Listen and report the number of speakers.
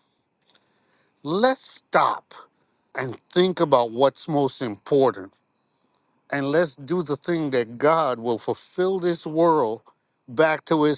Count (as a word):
one